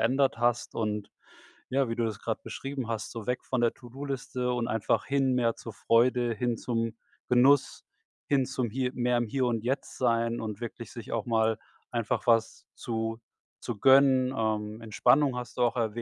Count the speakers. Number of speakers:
1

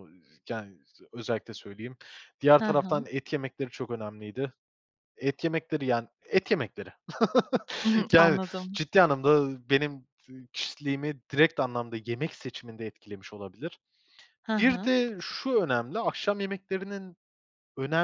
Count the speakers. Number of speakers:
2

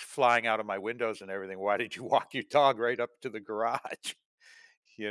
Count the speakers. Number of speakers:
1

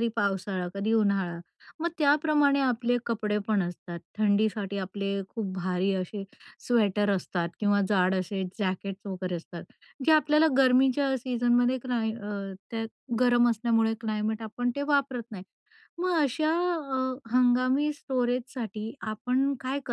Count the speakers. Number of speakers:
1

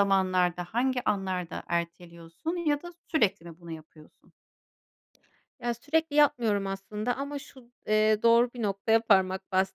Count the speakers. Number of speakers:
2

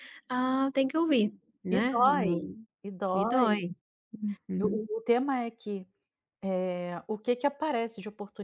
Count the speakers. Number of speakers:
2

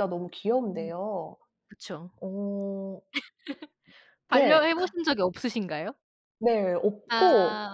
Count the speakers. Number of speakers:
2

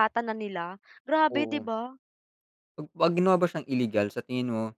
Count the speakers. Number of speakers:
2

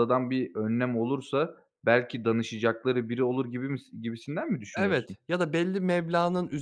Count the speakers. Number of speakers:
2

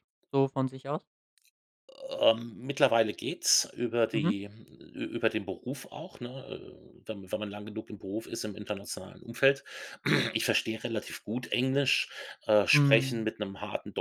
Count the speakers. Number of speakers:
2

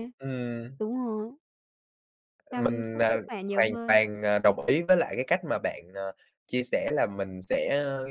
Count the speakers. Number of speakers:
2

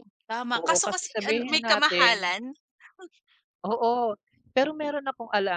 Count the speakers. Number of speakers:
2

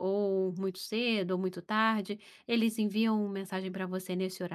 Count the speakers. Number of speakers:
1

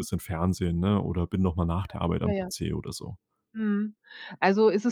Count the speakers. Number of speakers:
2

